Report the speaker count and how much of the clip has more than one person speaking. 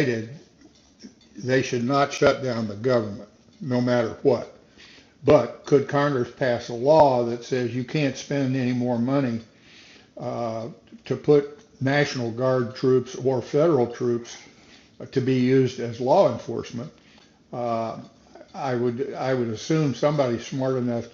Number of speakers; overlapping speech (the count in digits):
1, no overlap